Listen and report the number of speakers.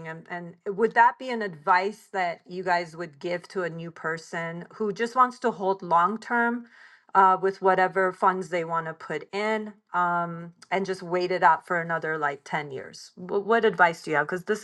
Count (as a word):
one